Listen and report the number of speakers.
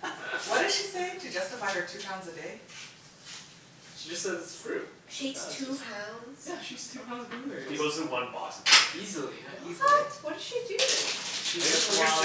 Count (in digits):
4